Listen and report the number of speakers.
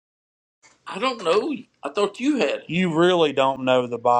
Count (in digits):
2